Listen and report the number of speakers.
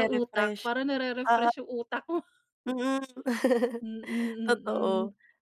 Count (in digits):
2